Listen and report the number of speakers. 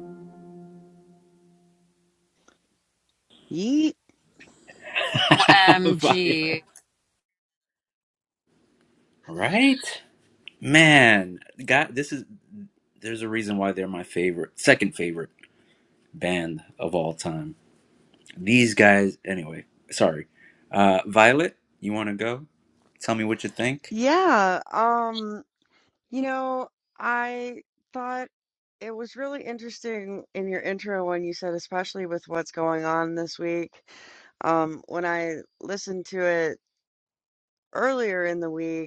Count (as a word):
three